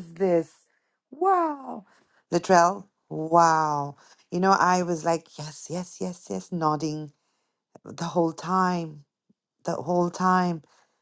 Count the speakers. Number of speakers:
1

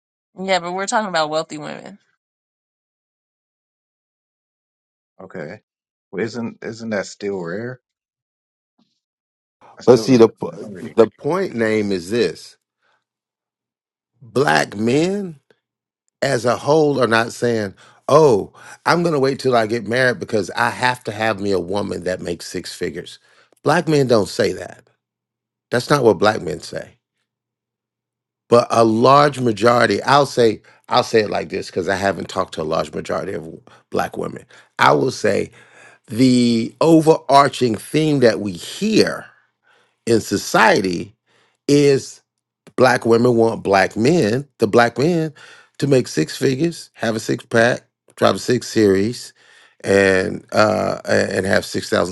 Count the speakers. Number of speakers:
3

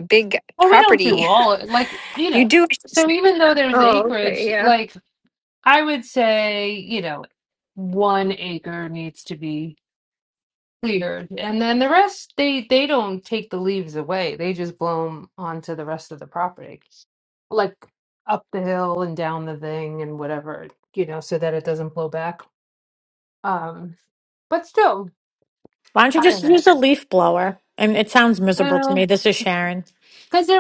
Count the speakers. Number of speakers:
3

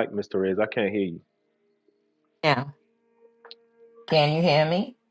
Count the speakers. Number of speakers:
2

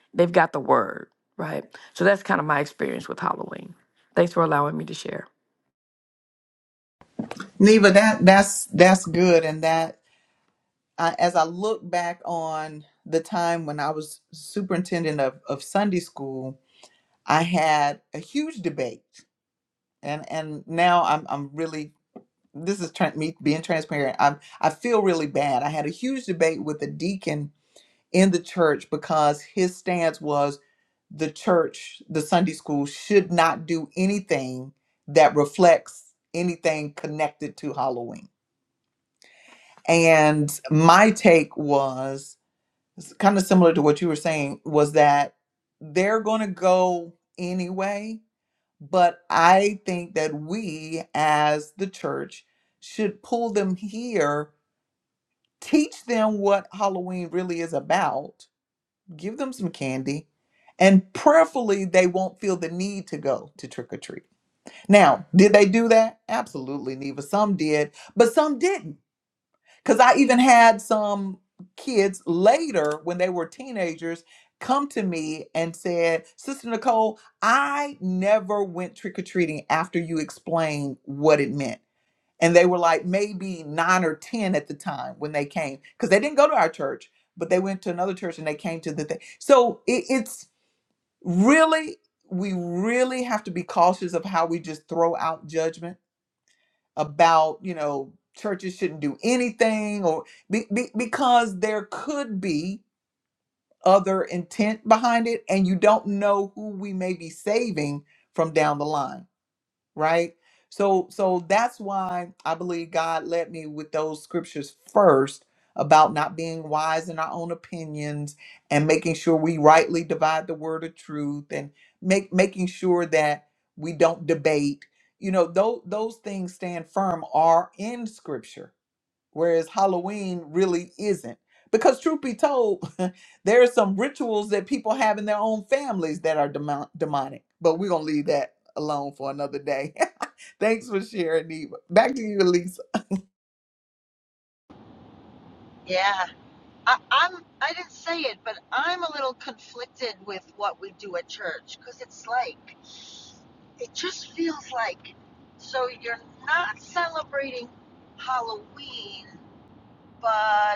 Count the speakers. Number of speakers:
3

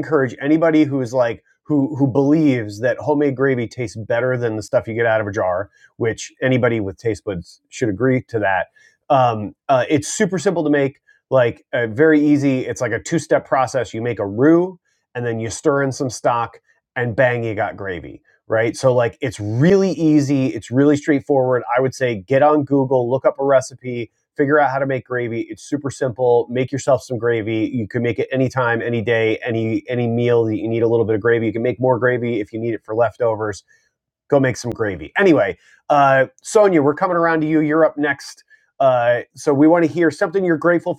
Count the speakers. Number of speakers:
1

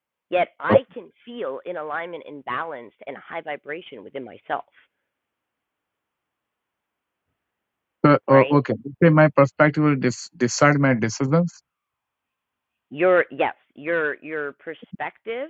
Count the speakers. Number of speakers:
2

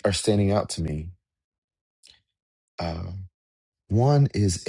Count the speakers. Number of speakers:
1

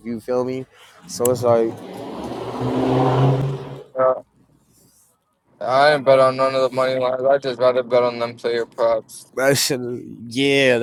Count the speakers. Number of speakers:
2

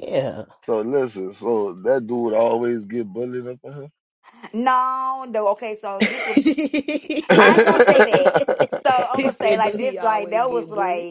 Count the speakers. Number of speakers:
3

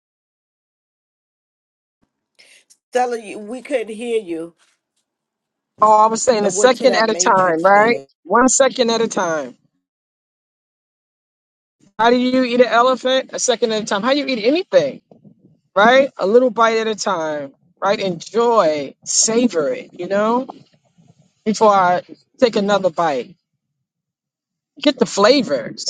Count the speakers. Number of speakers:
2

